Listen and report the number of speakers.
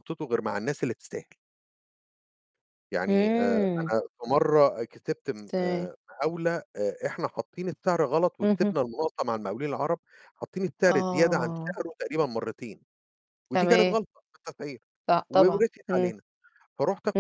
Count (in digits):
2